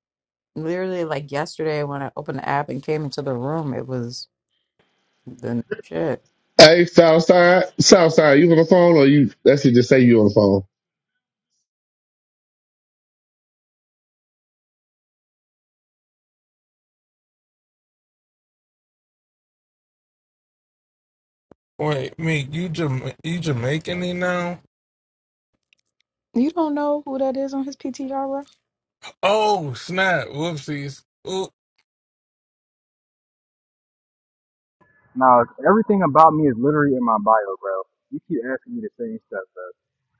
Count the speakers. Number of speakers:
4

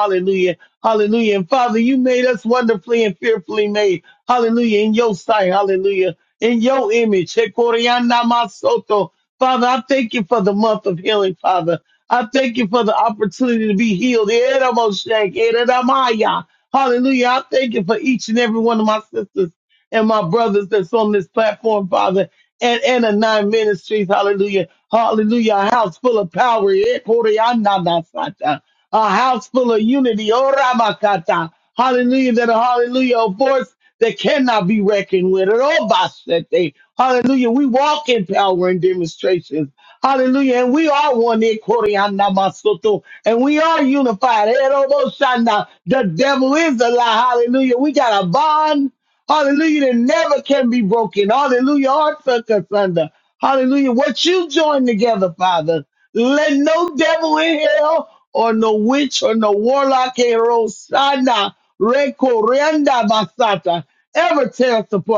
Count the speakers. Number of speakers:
1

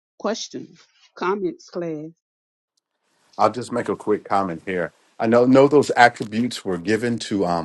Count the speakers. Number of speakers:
2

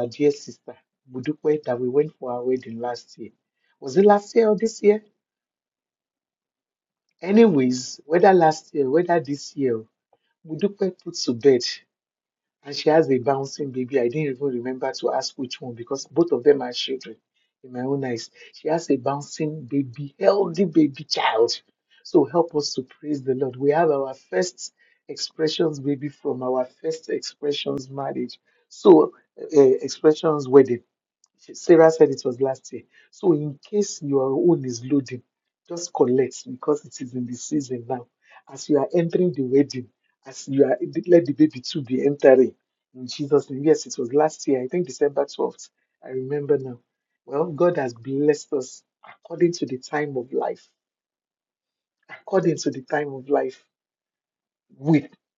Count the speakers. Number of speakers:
1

